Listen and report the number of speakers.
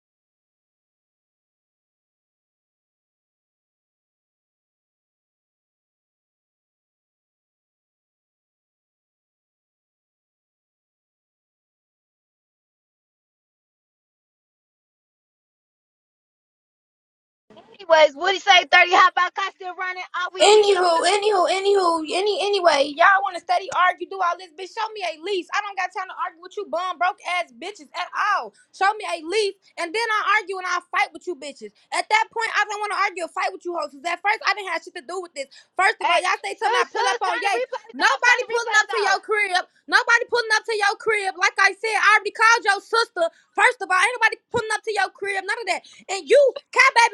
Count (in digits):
2